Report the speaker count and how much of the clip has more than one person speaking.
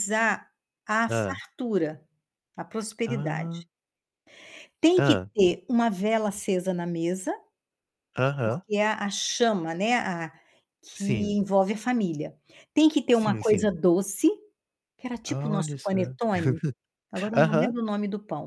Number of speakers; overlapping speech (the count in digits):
2, about 17%